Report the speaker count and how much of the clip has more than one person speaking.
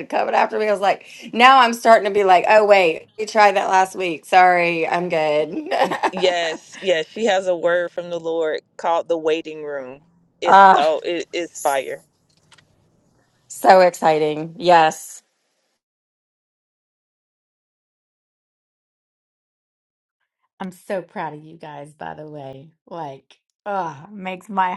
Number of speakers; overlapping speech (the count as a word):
three, about 2%